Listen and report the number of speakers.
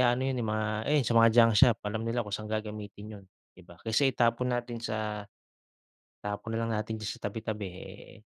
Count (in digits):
1